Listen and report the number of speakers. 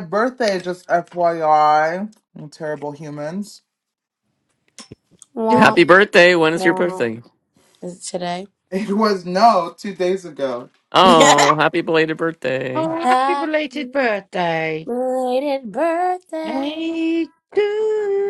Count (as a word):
four